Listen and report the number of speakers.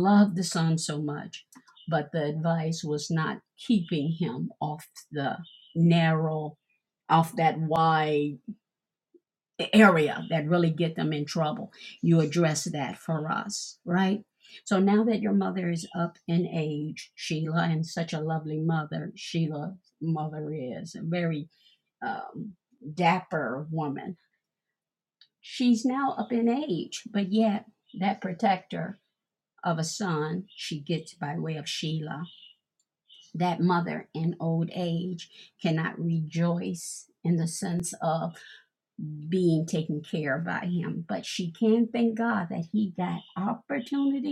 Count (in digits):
1